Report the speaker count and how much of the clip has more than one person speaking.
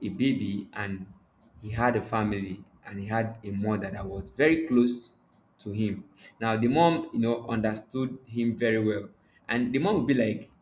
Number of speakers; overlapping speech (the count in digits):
1, no overlap